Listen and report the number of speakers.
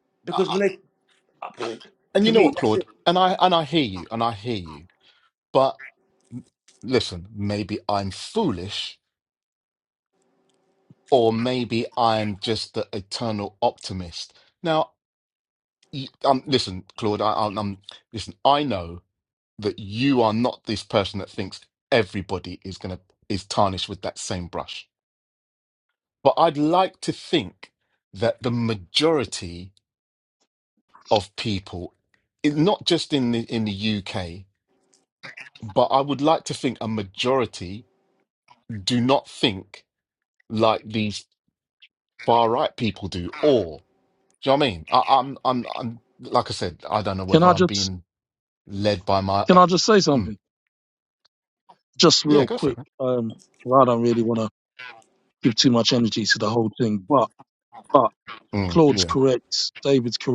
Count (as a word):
three